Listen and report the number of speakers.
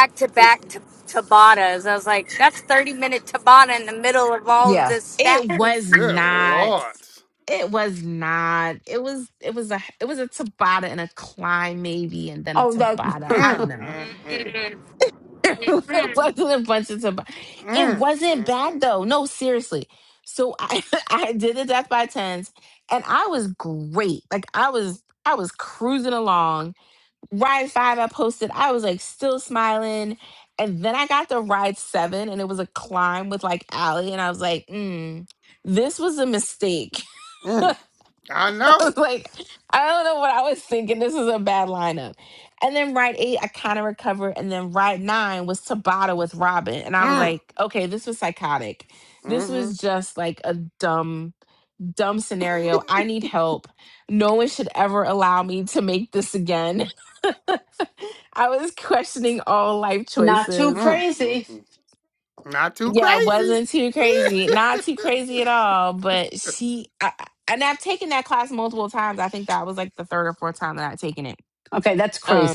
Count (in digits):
4